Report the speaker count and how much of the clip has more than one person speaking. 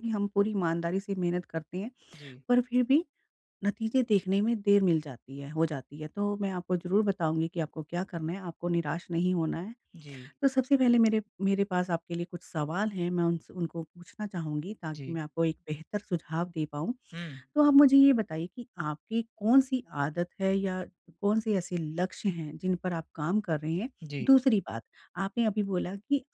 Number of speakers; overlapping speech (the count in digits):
2, about 1%